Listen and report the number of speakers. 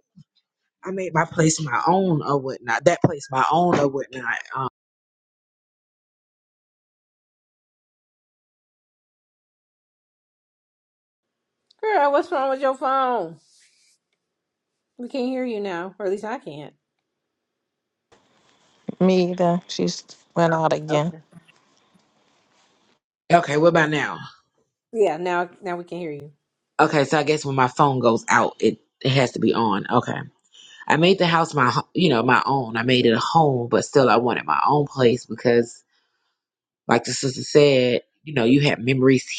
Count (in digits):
3